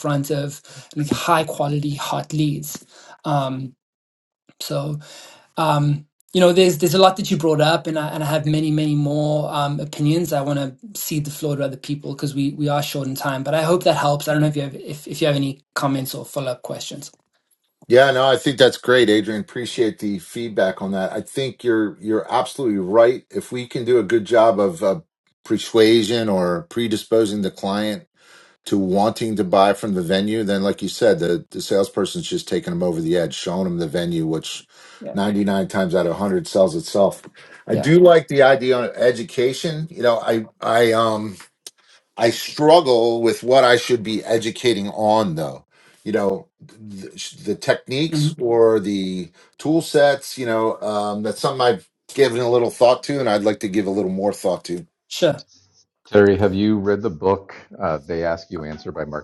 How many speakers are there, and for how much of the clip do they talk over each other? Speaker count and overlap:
3, about 1%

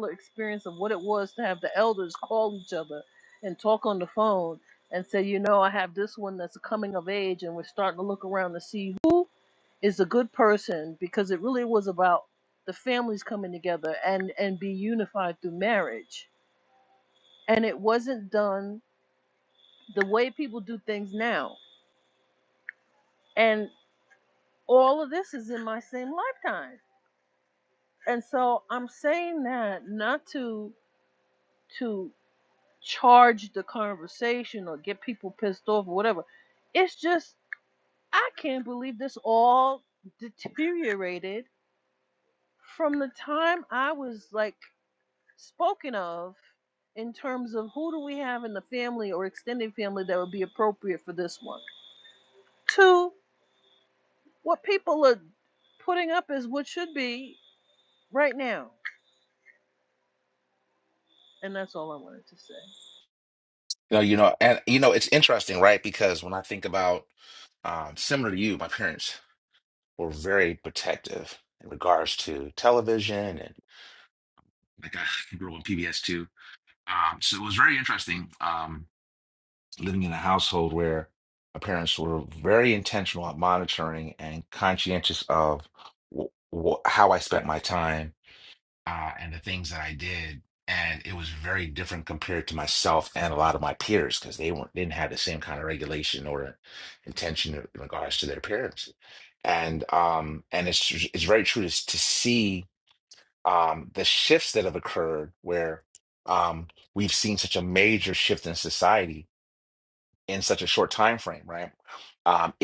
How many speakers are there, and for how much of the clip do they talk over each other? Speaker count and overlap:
2, no overlap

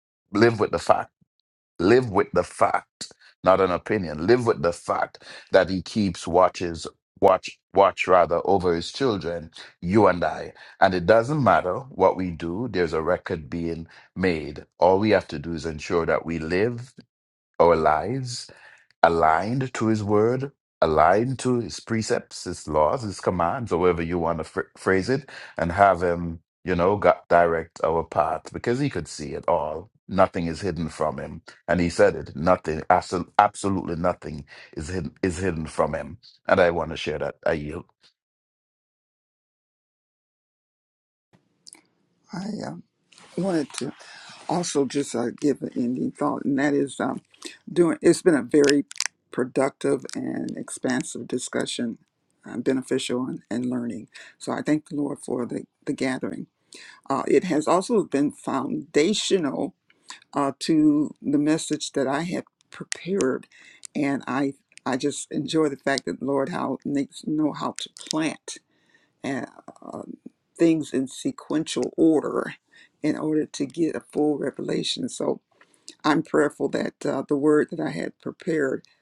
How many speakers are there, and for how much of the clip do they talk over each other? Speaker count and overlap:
2, no overlap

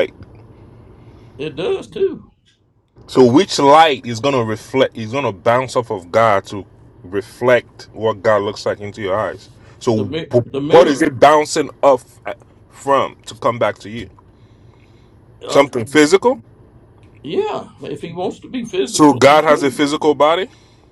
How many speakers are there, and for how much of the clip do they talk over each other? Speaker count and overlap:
2, about 11%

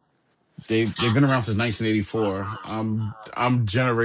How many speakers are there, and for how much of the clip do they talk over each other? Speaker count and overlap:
1, no overlap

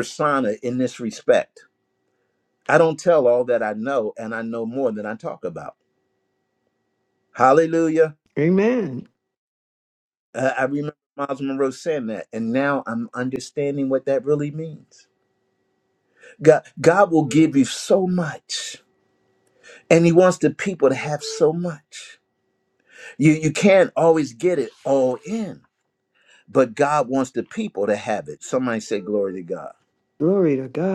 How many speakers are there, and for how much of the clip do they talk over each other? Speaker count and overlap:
2, no overlap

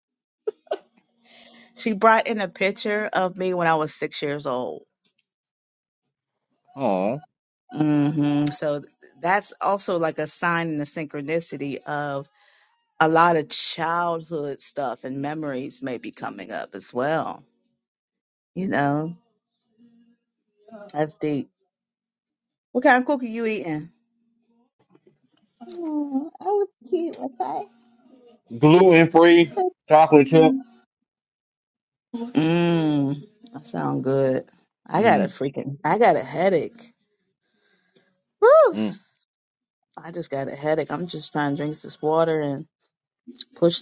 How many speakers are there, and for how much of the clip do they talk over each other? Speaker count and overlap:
2, about 1%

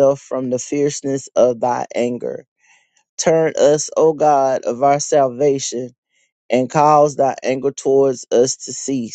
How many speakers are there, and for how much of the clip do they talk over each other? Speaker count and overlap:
1, no overlap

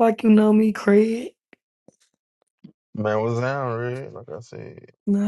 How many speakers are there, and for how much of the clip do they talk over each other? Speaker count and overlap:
2, no overlap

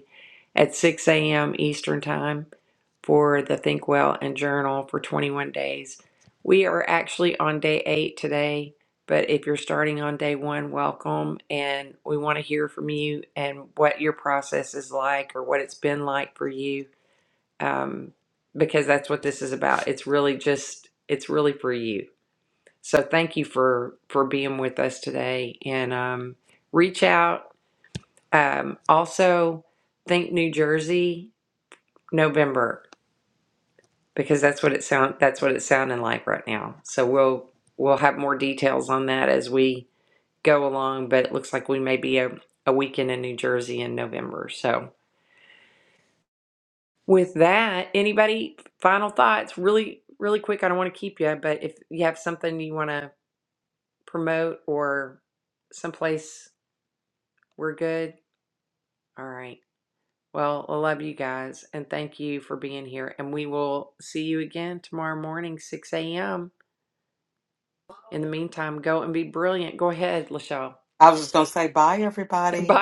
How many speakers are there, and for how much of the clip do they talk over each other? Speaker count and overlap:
2, under 1%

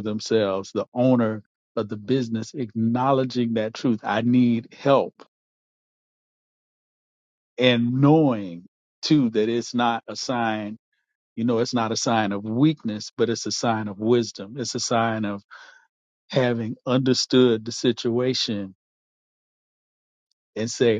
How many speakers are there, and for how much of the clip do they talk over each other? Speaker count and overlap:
1, no overlap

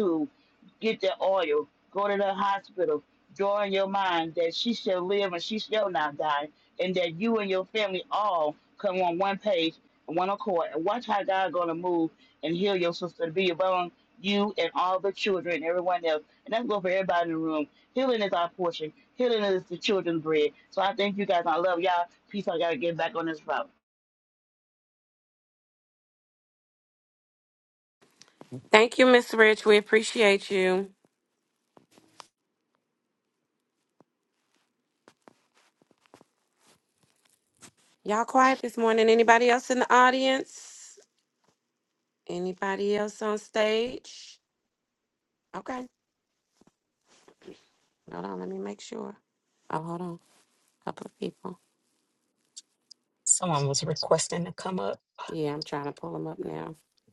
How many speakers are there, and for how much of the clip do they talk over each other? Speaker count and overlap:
3, no overlap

